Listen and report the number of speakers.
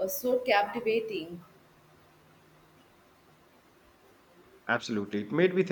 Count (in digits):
2